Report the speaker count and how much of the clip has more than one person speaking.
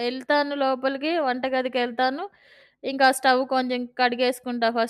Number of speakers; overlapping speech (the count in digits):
1, no overlap